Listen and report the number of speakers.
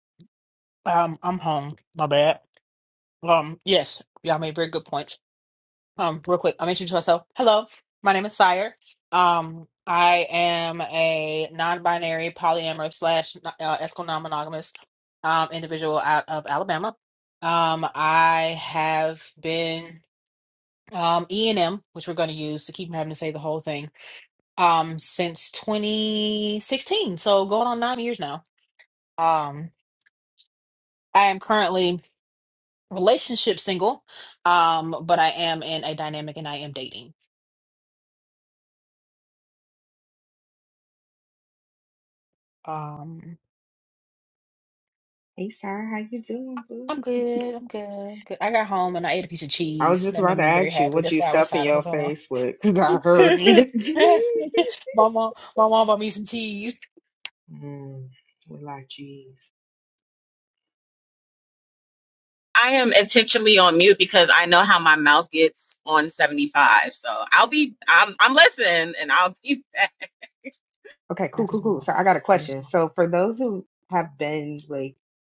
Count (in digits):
3